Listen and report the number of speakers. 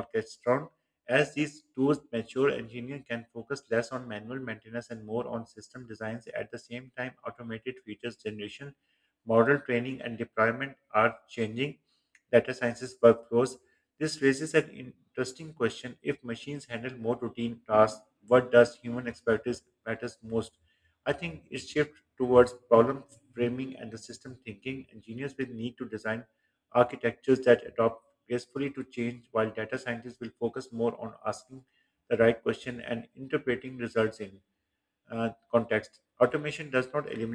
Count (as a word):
one